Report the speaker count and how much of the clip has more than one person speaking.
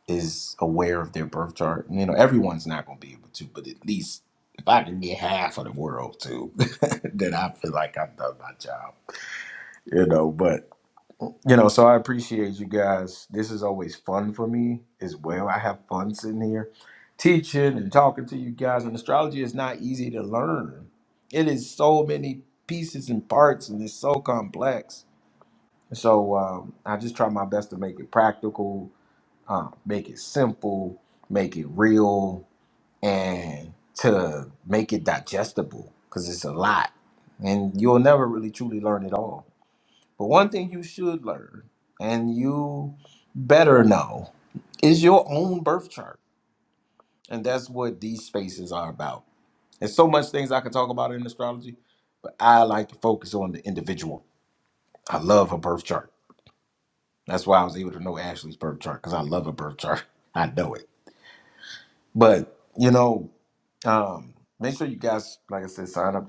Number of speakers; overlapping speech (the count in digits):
1, no overlap